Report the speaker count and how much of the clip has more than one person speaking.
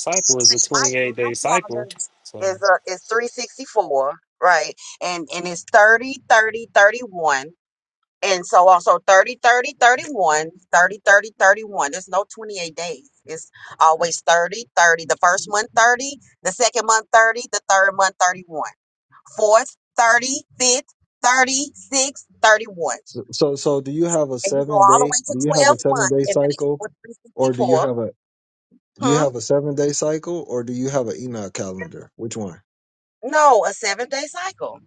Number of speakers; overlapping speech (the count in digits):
3, about 13%